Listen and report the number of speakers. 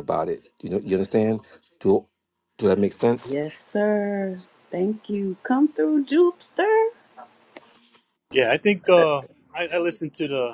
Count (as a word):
three